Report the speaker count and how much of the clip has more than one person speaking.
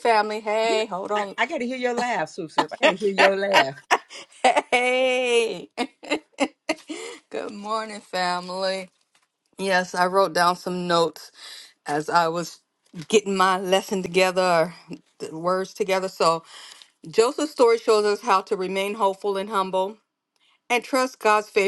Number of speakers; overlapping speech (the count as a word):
two, about 1%